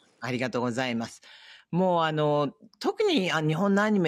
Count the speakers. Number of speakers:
one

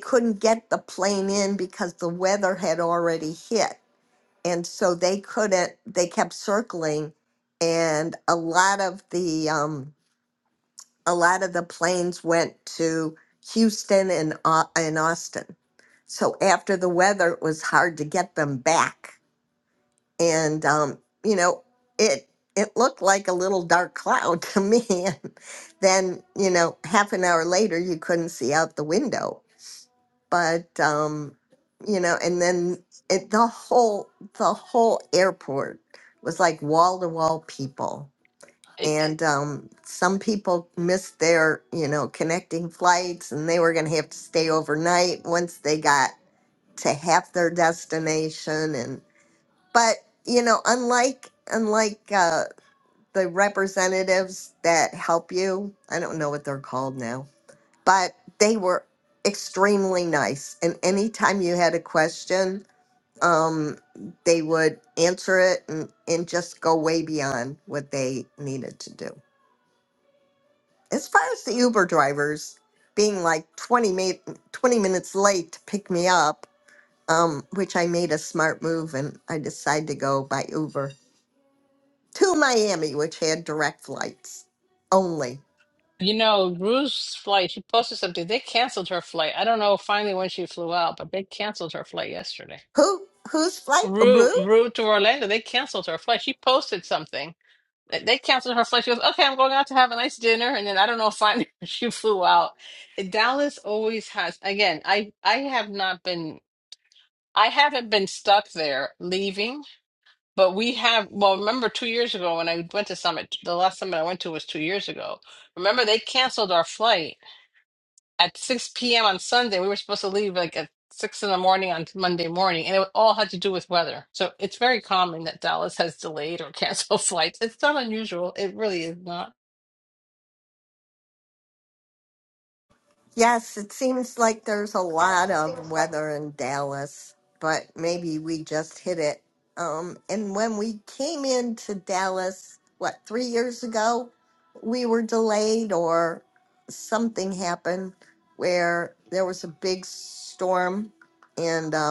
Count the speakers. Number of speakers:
two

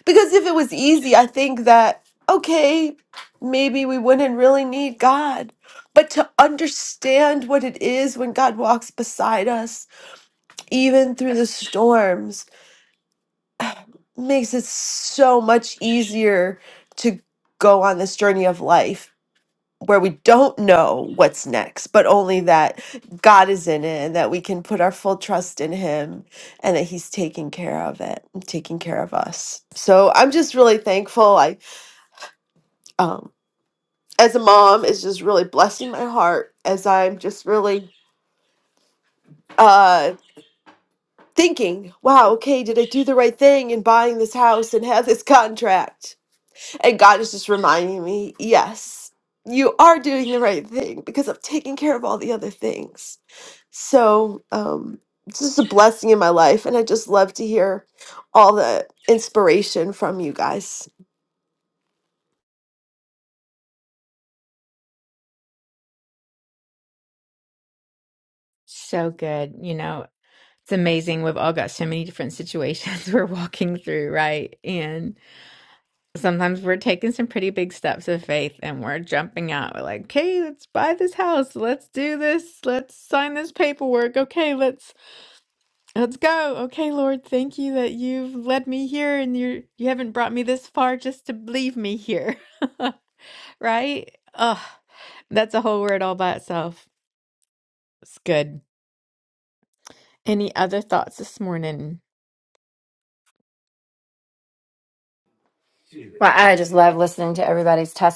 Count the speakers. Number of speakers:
three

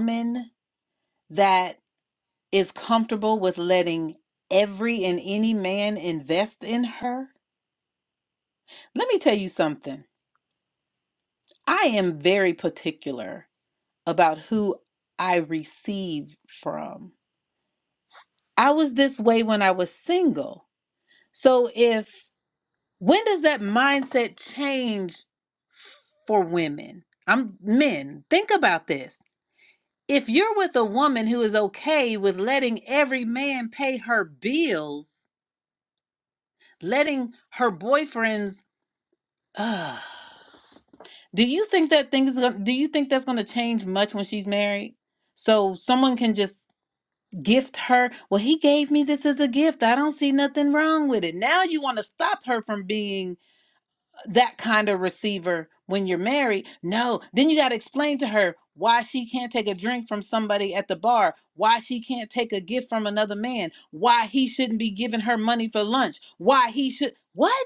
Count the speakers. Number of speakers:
one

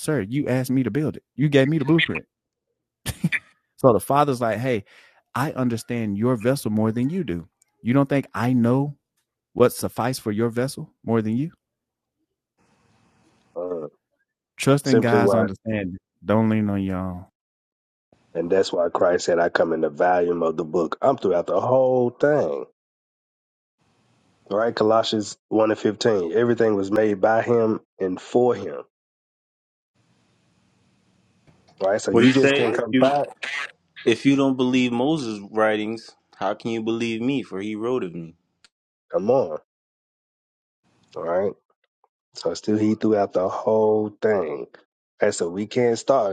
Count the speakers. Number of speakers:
three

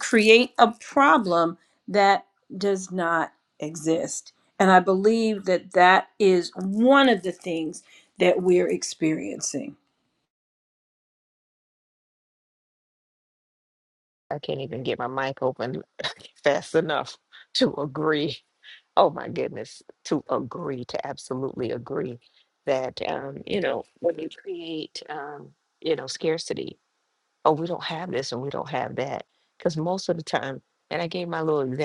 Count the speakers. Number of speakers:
two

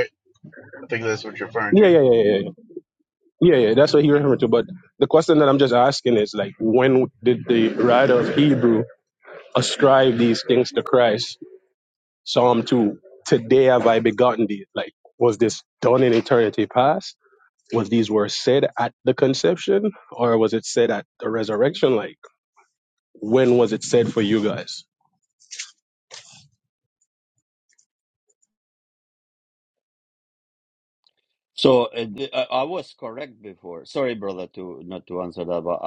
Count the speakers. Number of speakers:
three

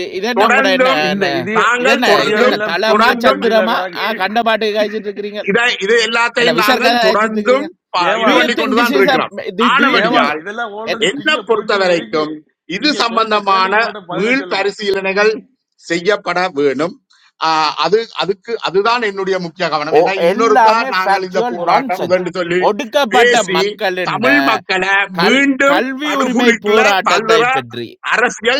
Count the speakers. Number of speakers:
three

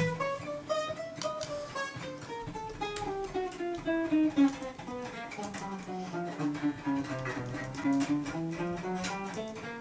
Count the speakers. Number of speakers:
zero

